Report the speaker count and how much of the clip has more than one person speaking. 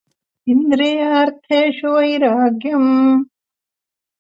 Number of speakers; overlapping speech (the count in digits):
1, no overlap